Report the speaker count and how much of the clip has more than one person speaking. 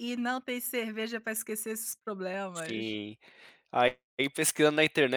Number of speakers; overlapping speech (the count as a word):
two, about 5%